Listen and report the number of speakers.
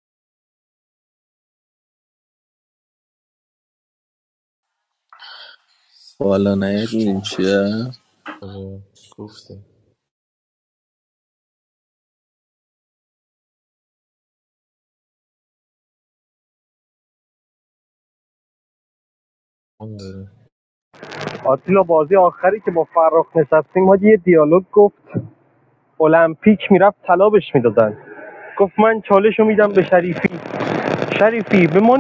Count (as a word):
three